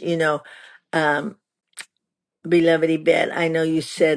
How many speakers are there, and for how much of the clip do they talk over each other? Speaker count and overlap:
one, no overlap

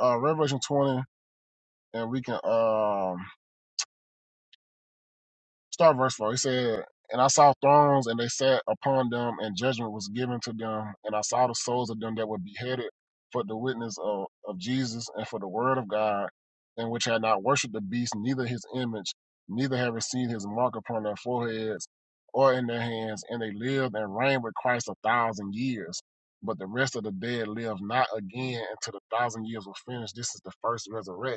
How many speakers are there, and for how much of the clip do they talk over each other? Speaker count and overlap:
one, no overlap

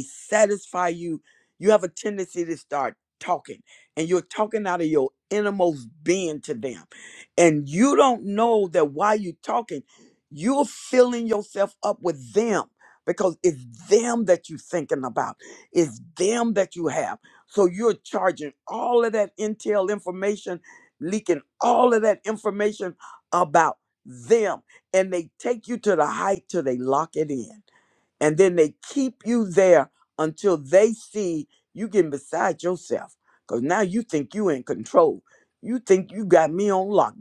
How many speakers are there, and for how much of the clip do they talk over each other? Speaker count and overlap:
one, no overlap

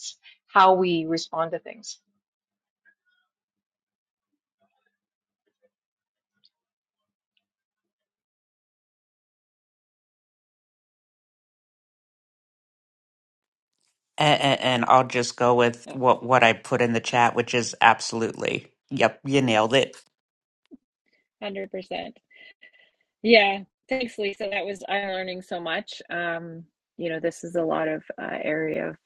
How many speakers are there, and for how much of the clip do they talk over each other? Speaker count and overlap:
three, under 1%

